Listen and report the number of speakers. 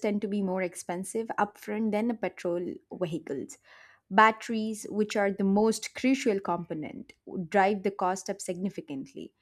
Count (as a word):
one